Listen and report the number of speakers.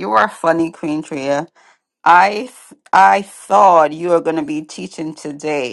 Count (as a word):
one